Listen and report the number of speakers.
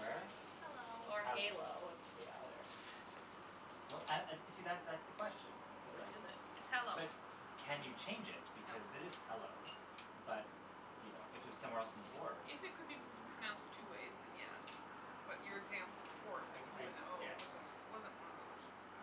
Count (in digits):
3